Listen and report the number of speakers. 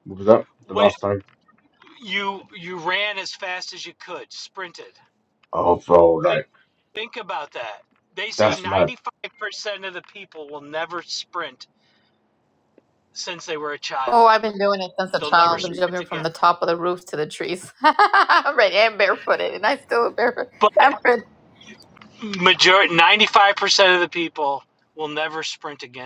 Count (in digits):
3